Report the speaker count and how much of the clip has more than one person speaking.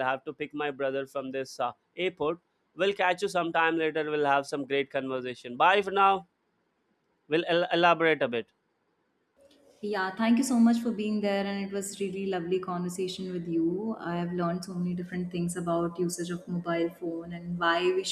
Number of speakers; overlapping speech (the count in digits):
2, no overlap